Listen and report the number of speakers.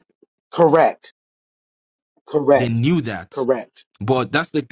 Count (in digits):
2